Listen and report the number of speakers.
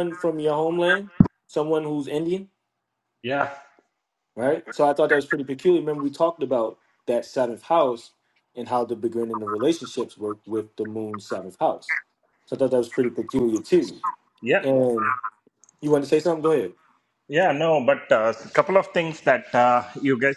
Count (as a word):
two